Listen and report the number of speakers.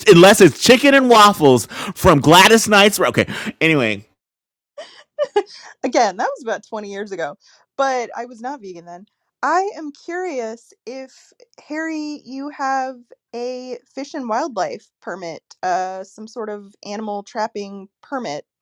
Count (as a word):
two